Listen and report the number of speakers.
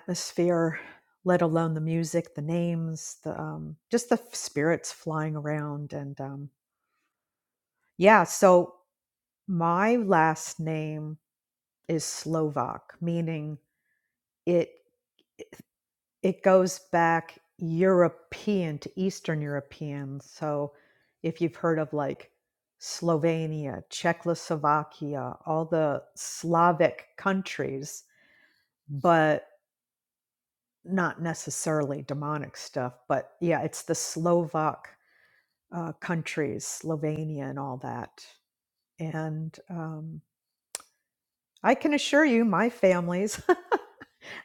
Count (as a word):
one